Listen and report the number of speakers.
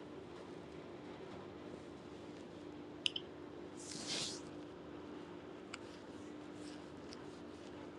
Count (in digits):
0